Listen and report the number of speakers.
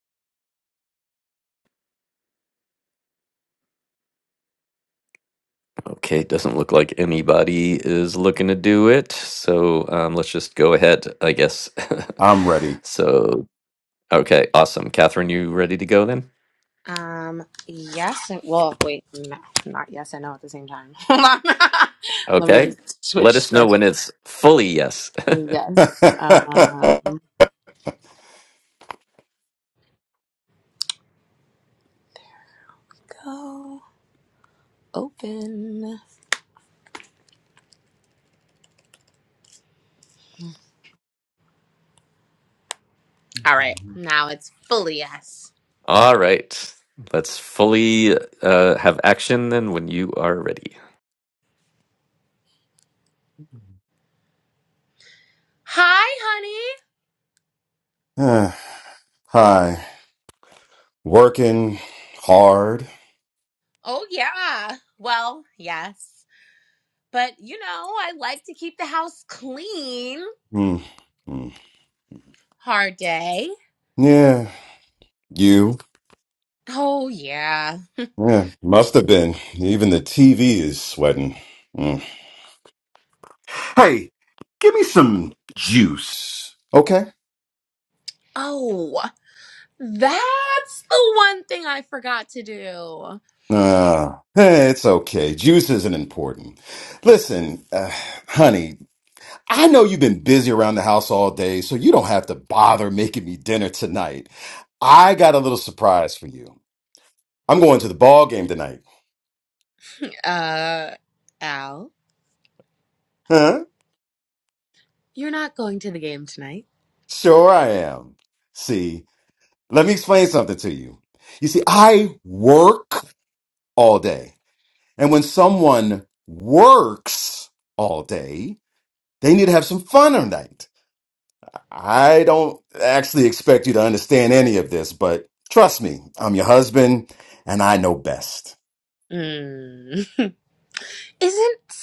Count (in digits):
3